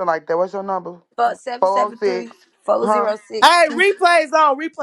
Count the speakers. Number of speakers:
3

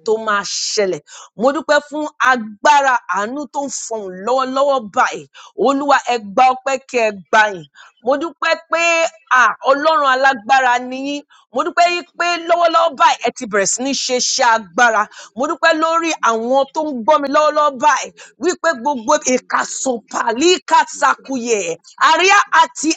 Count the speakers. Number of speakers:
1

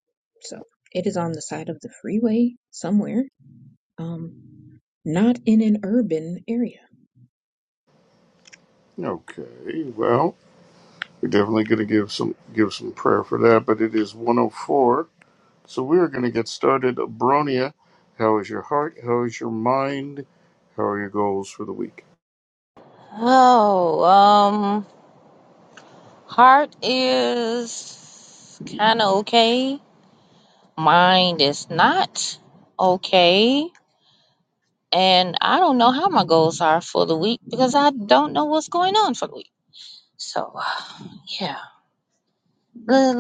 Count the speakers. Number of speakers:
3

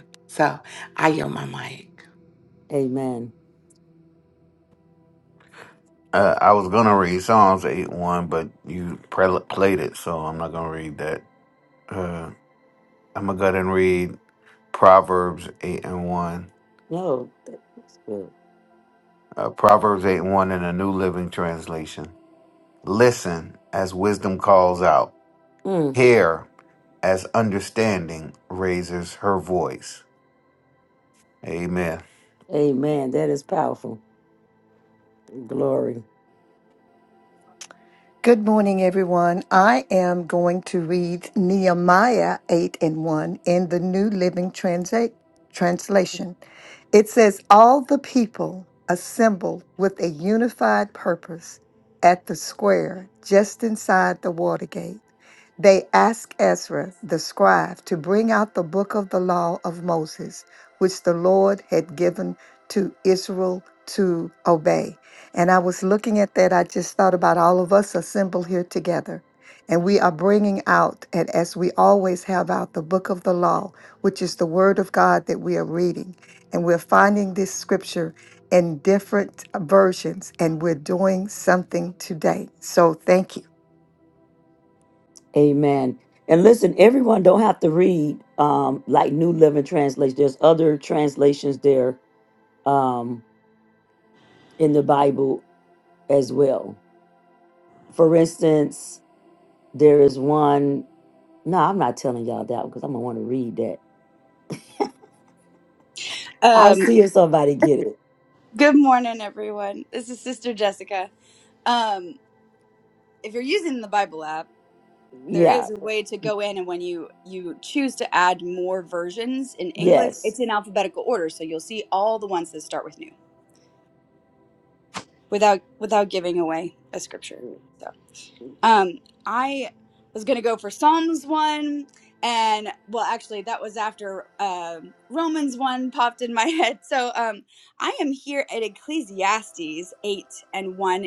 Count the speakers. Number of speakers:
5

